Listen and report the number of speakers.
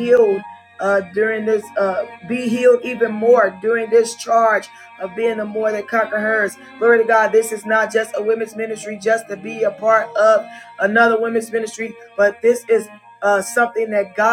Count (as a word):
one